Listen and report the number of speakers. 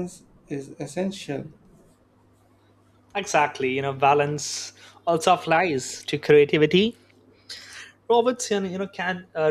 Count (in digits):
2